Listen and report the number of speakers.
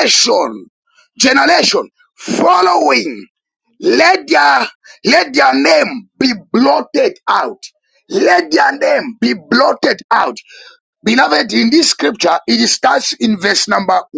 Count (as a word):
one